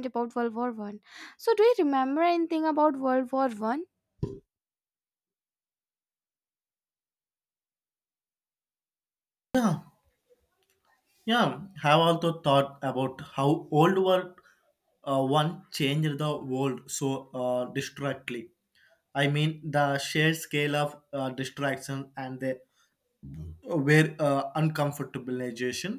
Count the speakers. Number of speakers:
2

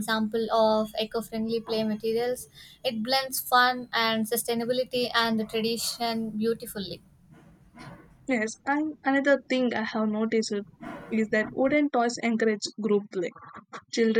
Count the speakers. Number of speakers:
2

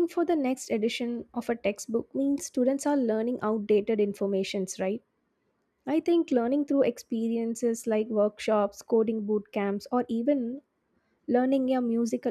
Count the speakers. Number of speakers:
1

